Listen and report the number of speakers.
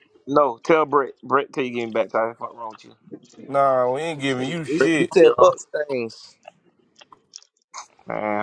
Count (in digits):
3